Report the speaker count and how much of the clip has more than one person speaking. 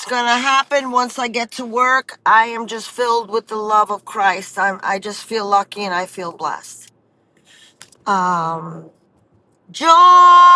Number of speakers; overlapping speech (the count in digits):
1, no overlap